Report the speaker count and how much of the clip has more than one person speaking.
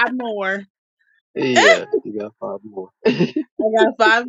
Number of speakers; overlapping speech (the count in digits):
2, about 7%